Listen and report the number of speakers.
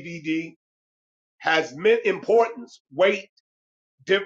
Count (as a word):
one